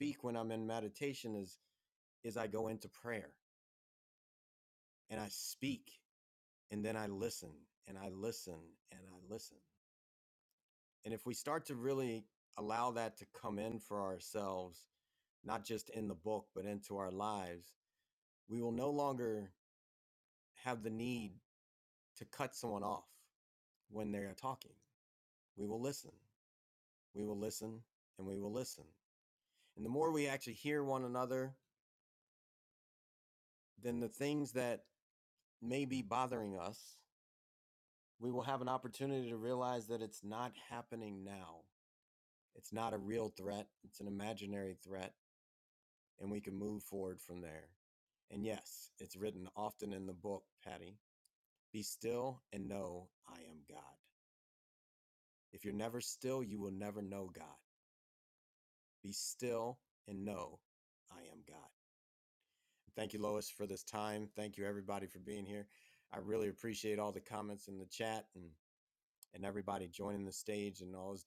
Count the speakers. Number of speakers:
one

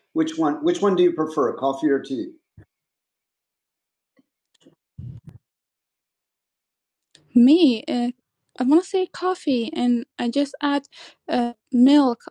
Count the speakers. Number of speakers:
two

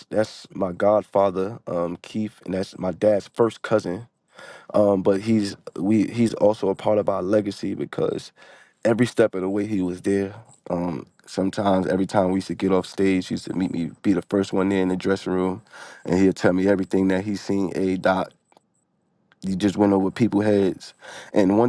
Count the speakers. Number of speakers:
one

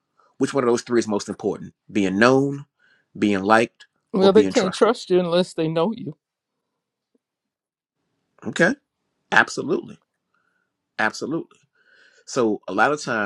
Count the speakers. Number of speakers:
two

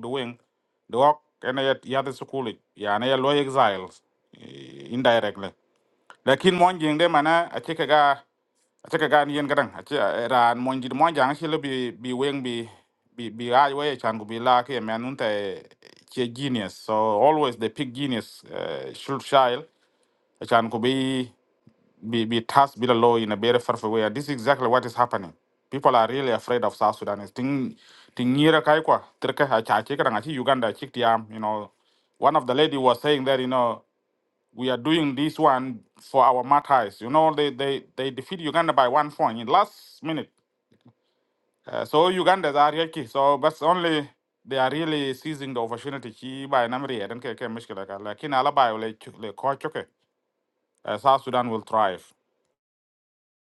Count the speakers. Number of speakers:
one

